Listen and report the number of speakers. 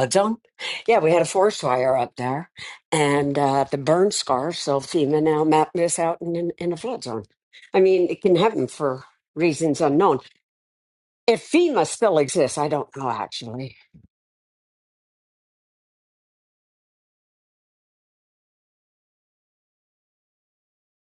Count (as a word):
one